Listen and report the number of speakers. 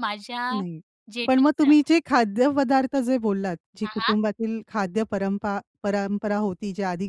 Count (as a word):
two